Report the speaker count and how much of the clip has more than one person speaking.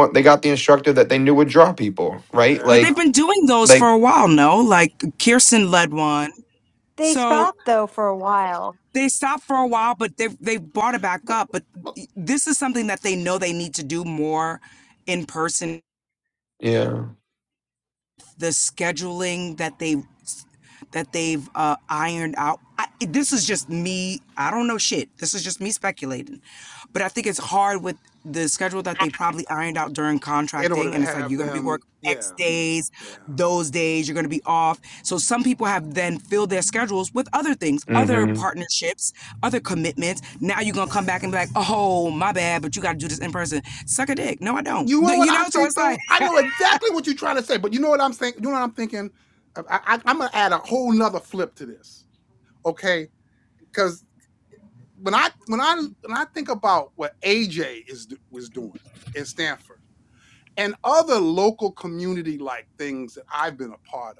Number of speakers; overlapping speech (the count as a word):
four, about 8%